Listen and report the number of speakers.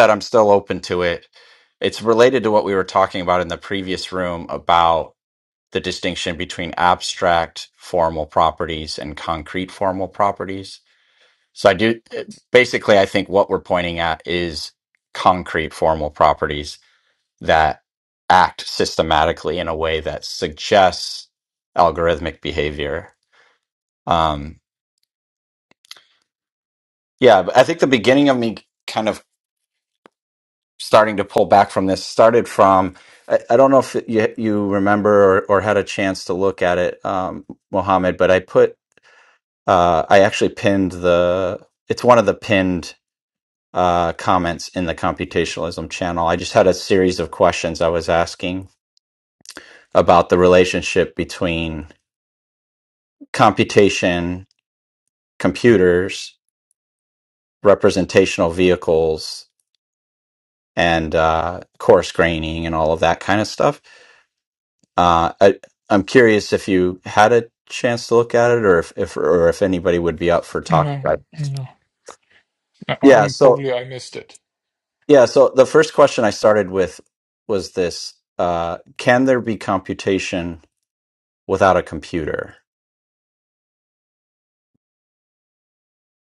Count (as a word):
two